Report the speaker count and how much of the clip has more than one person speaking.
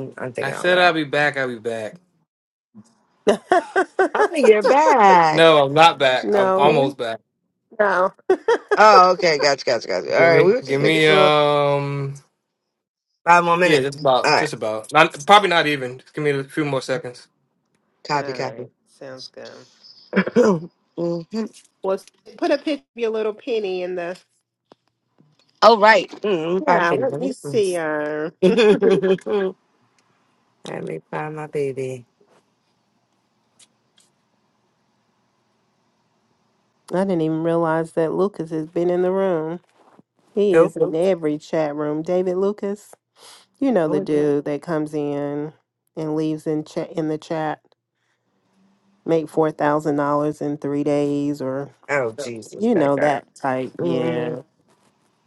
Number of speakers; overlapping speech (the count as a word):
three, about 10%